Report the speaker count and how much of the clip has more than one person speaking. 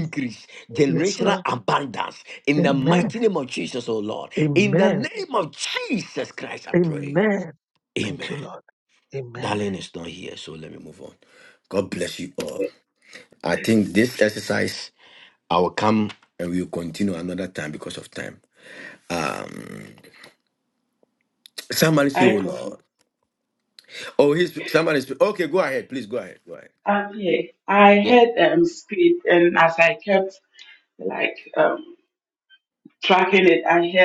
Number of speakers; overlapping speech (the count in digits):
3, about 11%